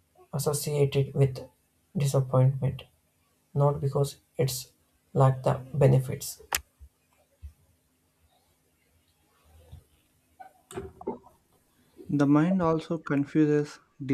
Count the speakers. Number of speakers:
2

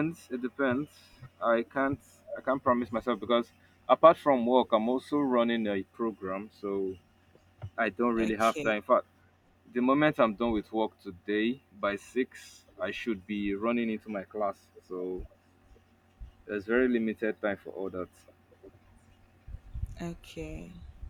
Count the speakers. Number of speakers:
2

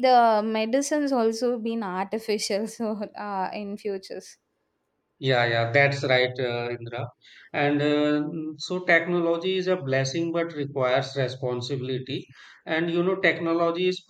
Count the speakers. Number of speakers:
2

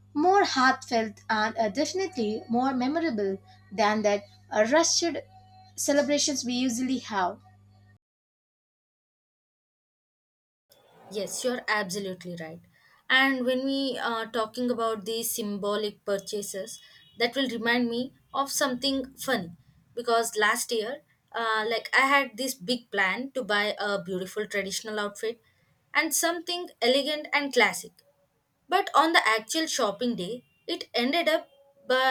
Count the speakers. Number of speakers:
2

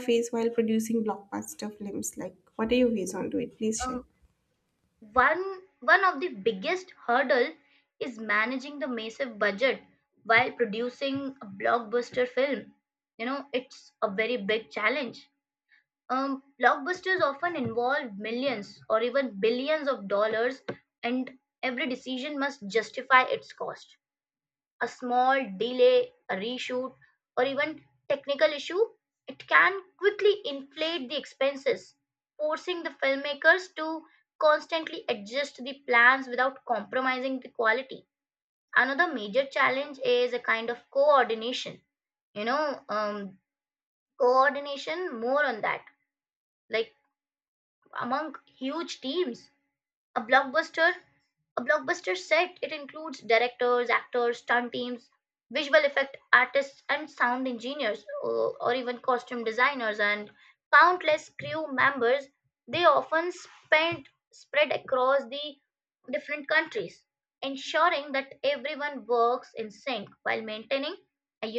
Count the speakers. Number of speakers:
2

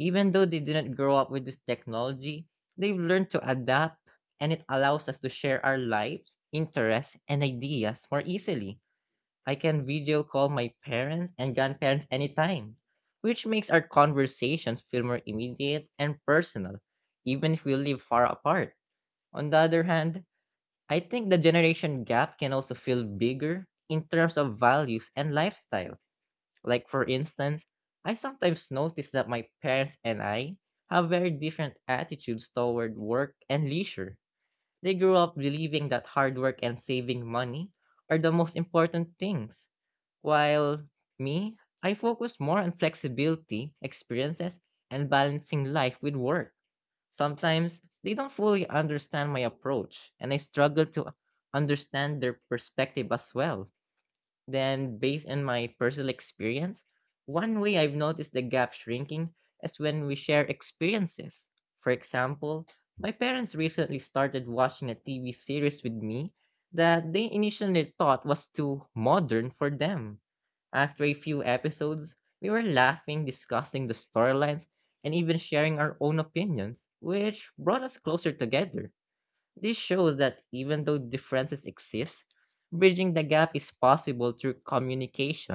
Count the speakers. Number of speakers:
1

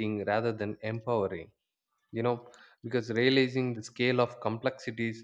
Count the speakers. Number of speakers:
1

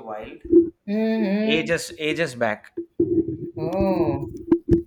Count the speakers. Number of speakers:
2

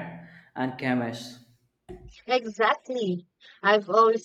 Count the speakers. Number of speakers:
2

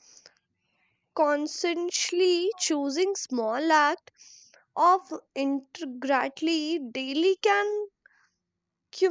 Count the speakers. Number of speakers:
1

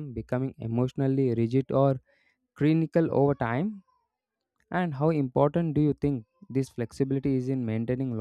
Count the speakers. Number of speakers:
1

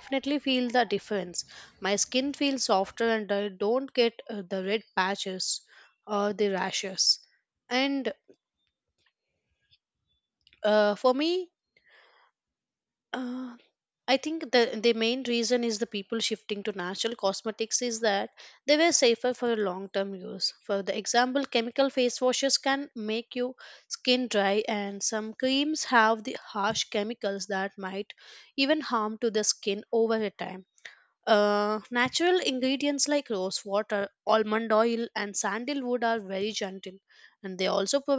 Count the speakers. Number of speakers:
1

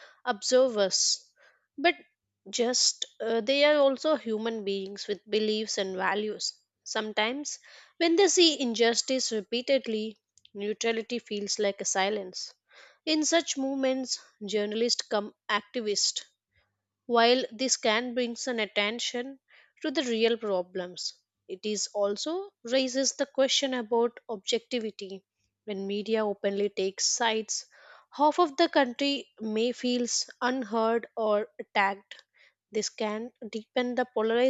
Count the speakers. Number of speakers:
1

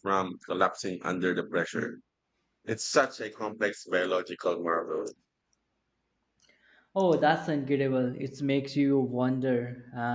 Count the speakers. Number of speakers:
2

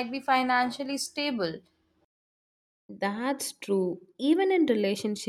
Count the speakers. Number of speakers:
2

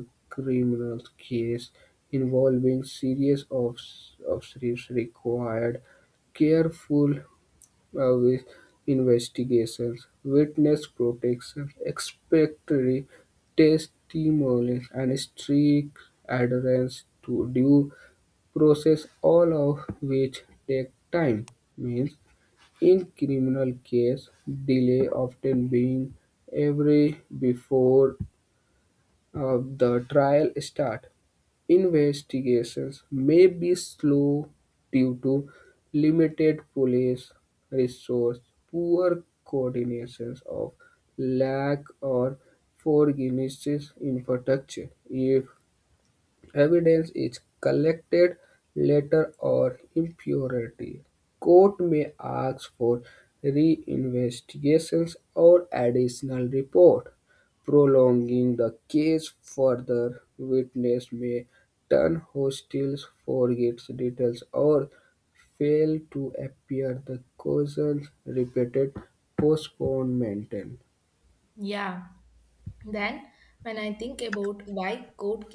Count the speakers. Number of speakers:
2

